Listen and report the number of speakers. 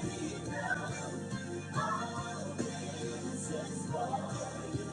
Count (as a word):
zero